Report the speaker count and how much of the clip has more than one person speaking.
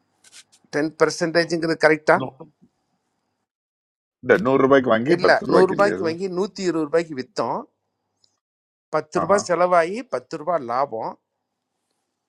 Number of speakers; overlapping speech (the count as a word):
two, about 11%